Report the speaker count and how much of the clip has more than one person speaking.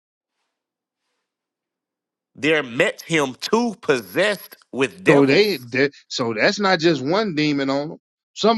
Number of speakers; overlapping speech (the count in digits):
2, about 4%